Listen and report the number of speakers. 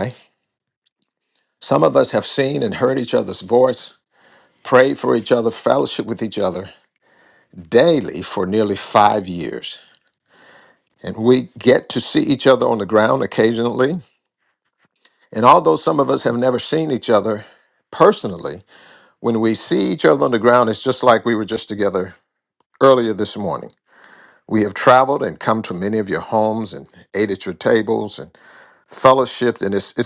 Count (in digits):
1